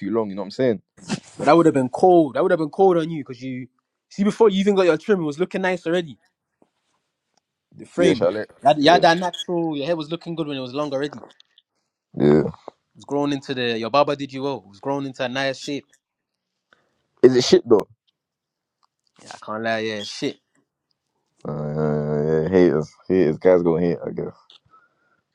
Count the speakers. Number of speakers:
2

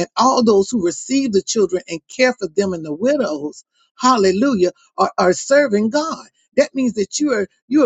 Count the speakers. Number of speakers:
1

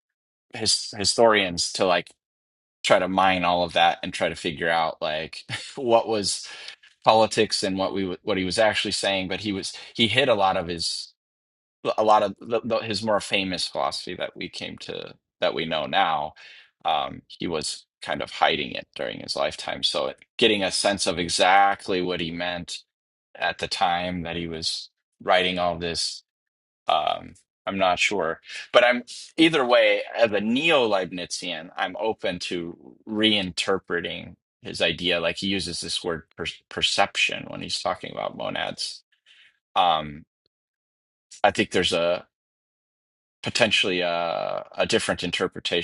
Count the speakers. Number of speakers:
1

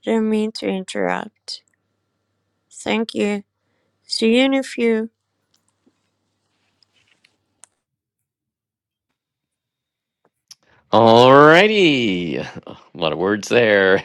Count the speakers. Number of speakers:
2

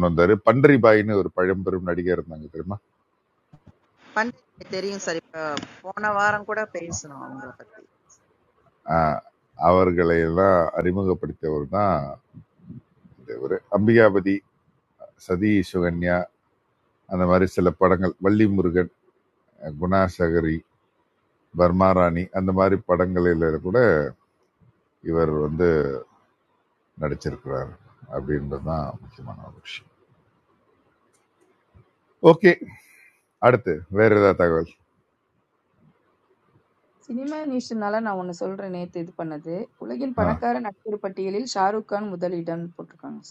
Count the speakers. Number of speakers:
3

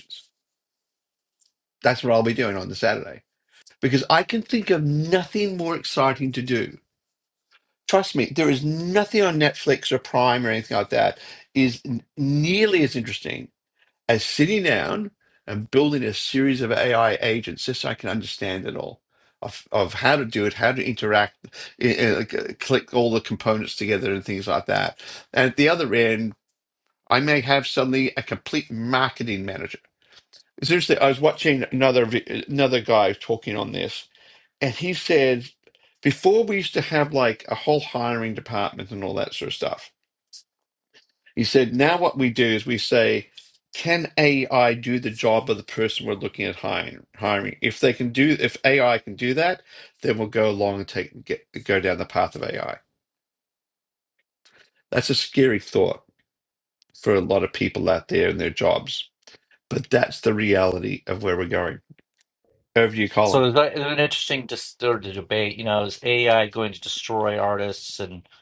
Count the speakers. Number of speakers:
2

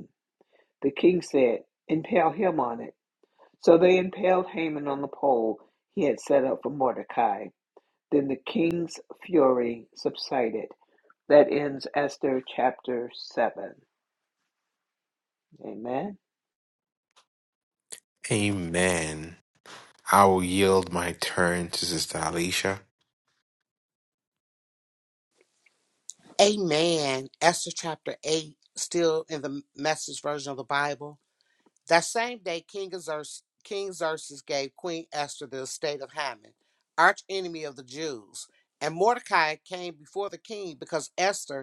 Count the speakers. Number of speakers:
3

